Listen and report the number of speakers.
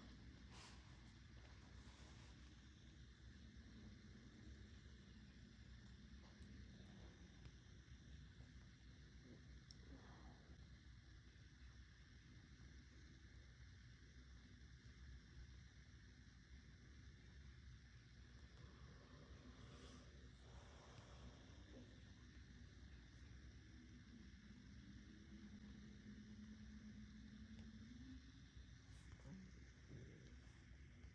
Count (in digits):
0